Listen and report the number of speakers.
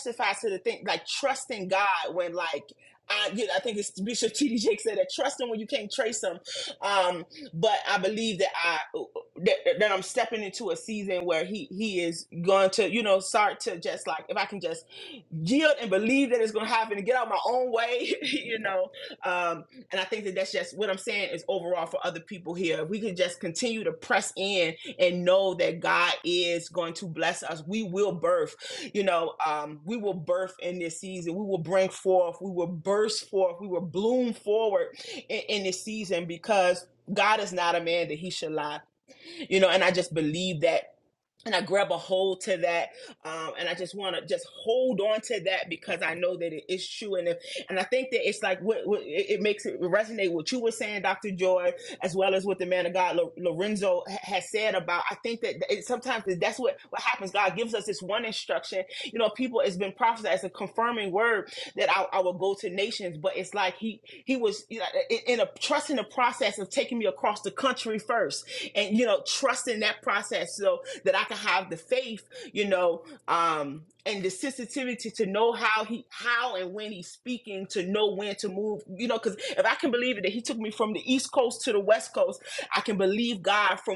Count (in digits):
1